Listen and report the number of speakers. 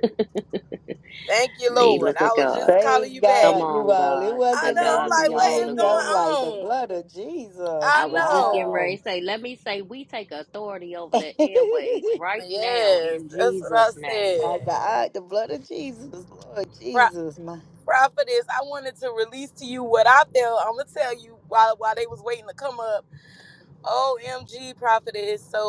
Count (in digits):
3